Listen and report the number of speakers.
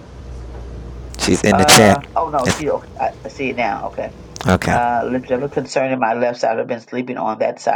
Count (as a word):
two